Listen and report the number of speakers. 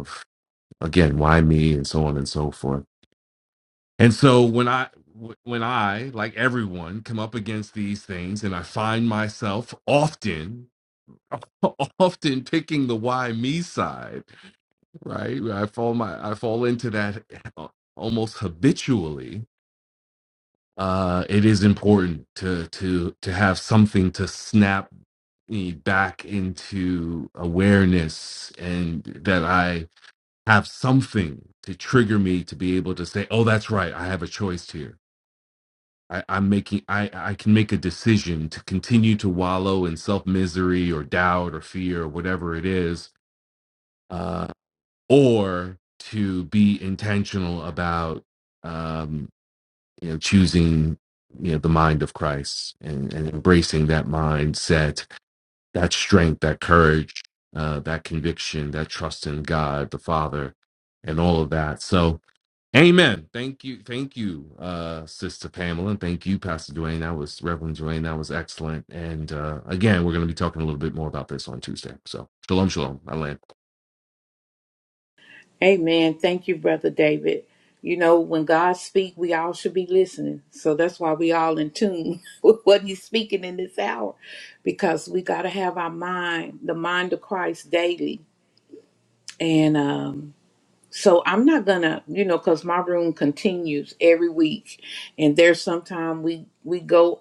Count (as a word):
two